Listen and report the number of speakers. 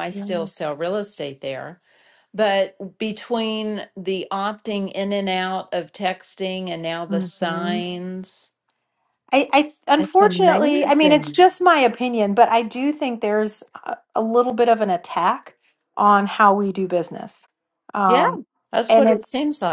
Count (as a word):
two